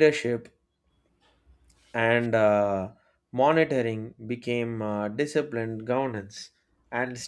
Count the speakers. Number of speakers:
1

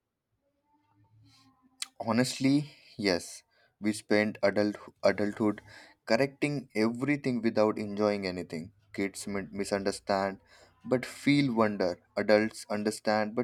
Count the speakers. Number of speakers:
1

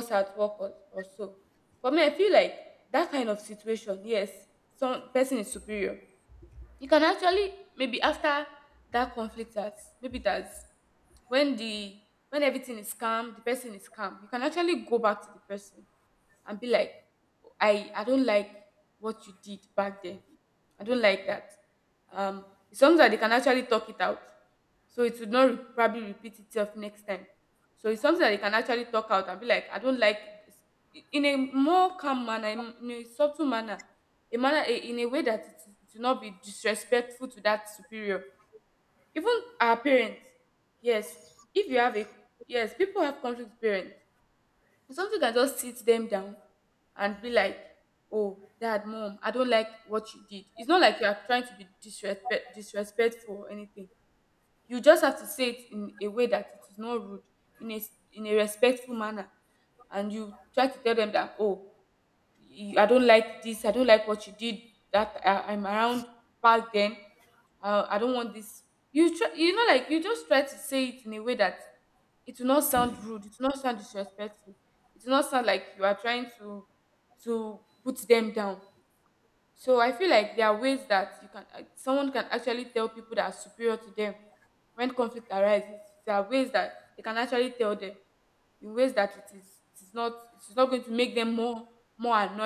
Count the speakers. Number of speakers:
1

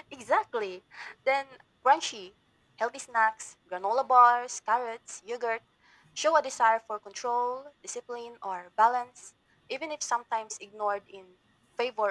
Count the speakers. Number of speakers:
1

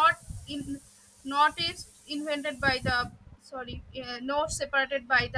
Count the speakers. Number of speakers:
1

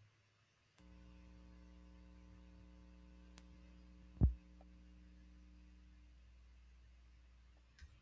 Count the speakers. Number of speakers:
0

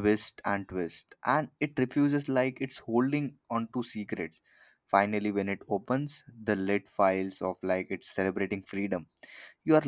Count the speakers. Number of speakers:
1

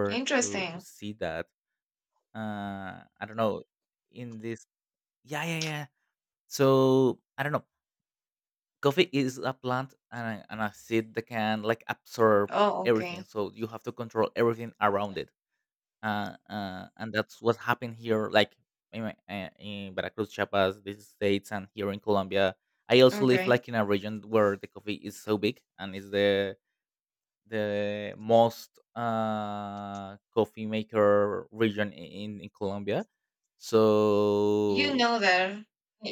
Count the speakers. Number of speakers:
2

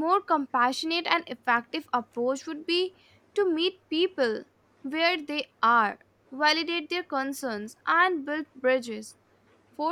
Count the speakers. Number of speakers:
1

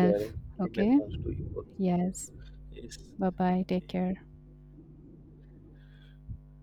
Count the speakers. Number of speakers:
2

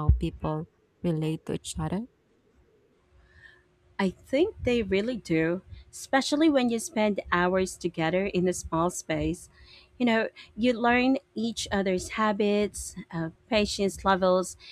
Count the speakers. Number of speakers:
2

